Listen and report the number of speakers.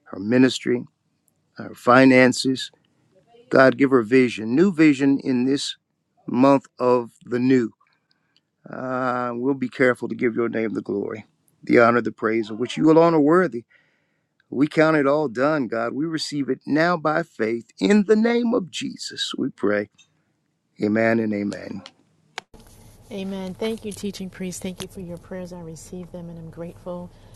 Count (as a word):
two